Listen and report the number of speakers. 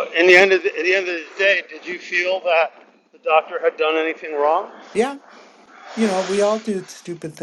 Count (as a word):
two